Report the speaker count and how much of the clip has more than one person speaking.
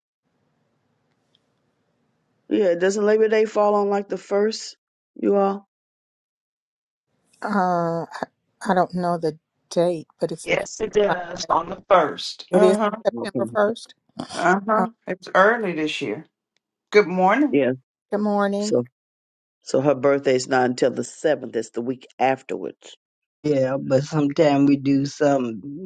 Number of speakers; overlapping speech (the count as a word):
four, about 6%